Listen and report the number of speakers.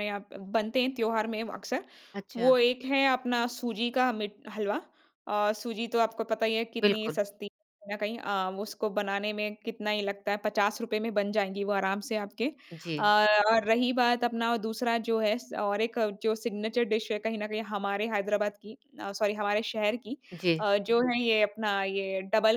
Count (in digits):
2